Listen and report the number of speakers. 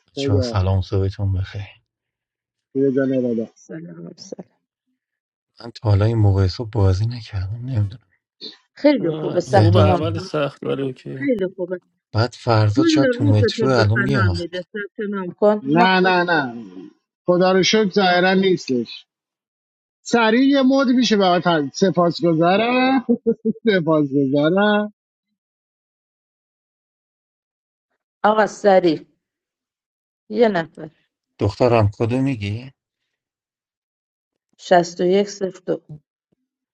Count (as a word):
four